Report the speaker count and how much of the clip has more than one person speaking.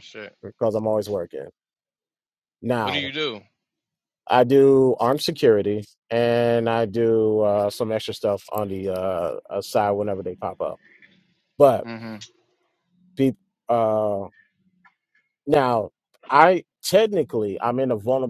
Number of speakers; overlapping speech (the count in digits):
2, about 1%